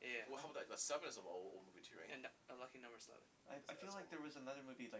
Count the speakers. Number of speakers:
three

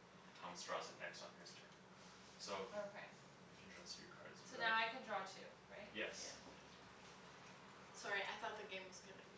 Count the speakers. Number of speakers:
three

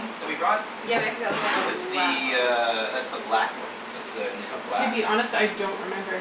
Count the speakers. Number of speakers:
three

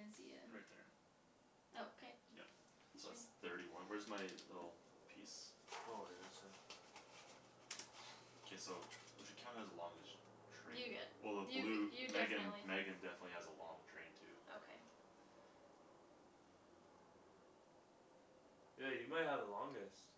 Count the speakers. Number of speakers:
three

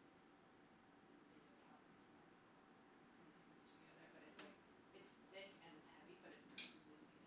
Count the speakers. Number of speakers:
one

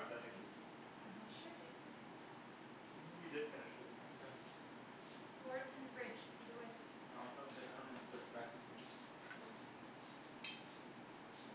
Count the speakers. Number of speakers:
two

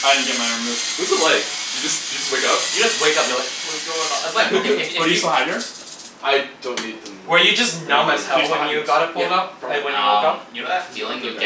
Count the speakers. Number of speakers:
four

